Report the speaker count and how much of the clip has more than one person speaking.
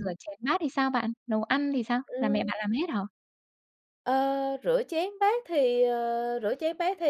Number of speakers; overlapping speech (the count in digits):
2, about 9%